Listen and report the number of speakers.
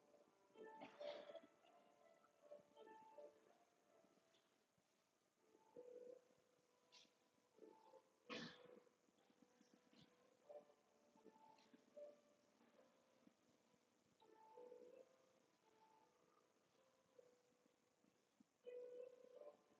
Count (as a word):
zero